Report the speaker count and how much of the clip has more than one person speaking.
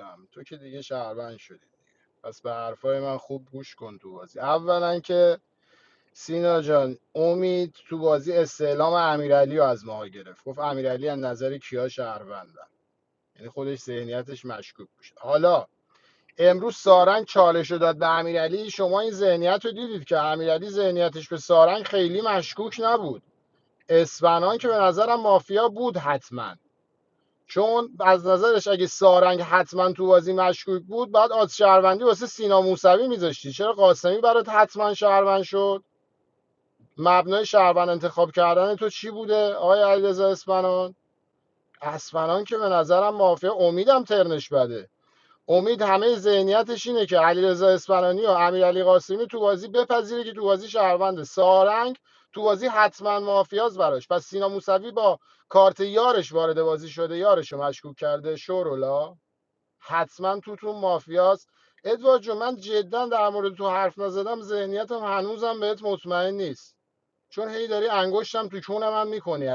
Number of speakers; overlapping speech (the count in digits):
1, no overlap